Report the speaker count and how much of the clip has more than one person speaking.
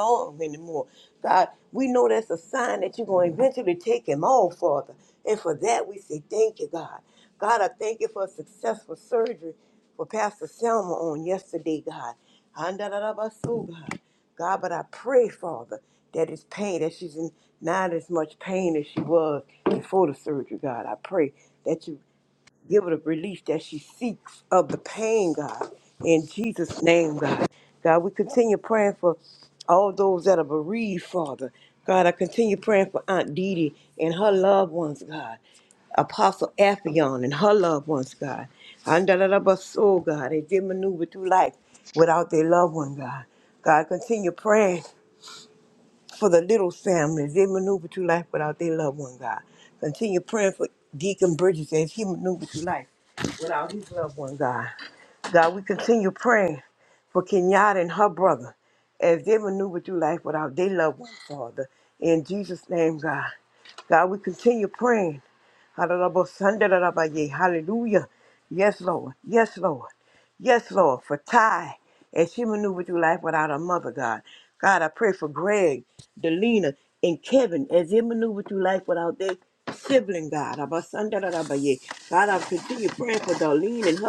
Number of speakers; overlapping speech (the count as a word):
one, no overlap